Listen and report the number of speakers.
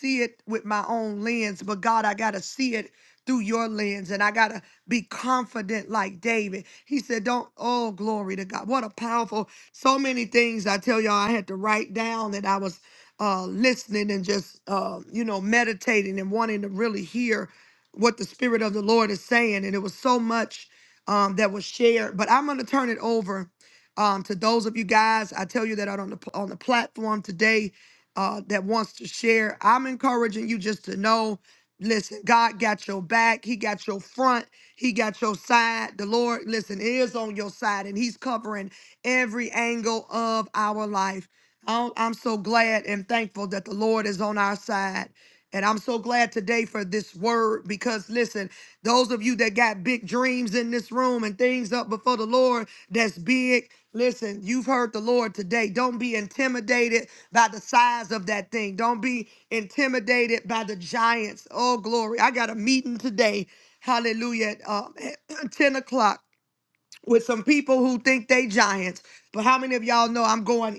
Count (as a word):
one